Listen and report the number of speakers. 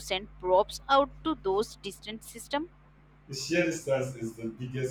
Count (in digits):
2